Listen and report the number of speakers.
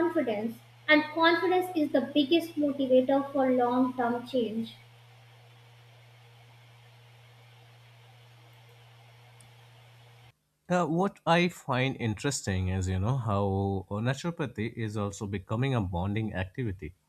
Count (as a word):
two